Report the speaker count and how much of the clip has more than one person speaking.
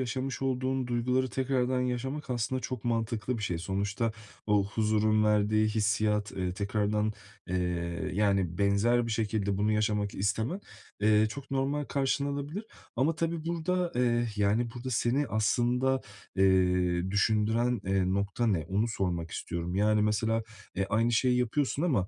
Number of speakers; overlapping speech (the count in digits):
1, no overlap